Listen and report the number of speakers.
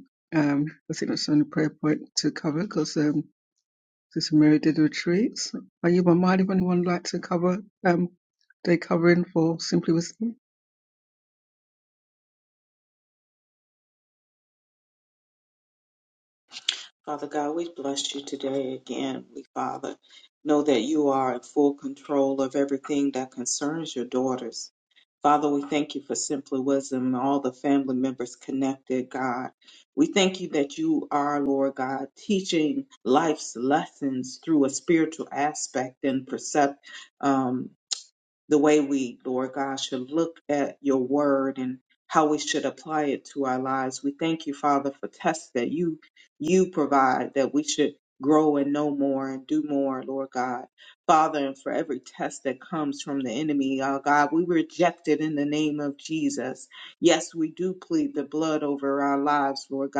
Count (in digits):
2